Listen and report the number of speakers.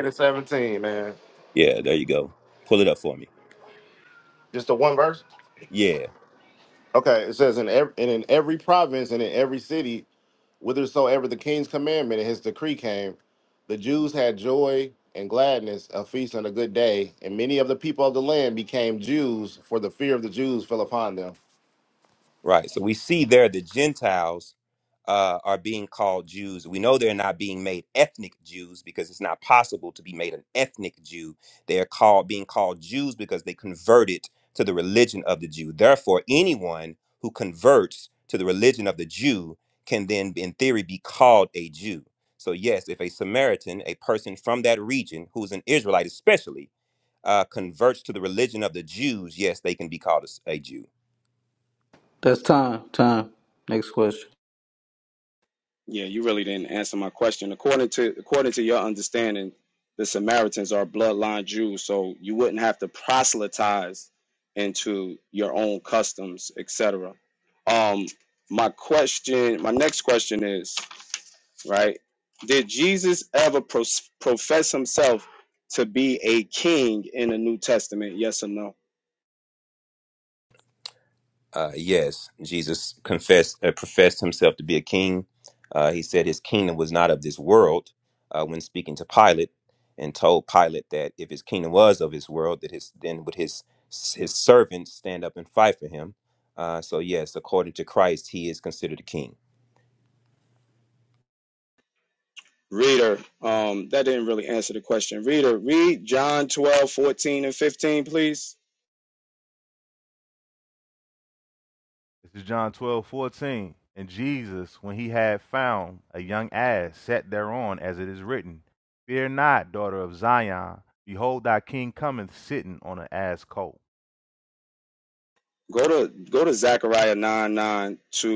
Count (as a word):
five